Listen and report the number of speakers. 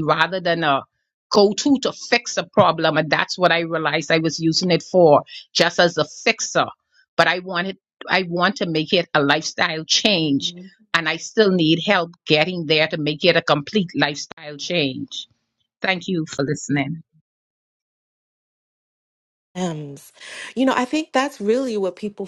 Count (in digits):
2